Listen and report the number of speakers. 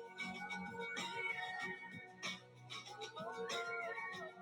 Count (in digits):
0